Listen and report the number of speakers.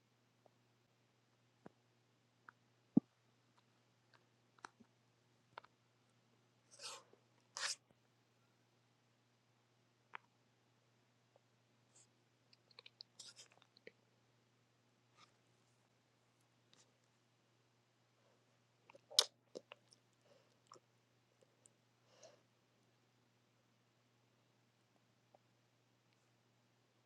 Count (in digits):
0